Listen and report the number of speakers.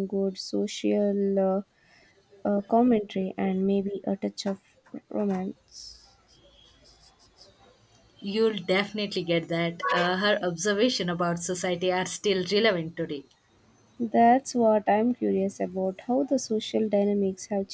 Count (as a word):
two